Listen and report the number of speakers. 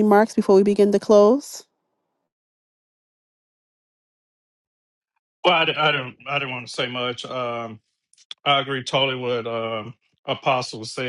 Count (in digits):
2